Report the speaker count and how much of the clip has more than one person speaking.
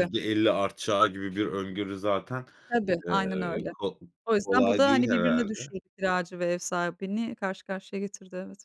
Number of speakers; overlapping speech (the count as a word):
two, about 24%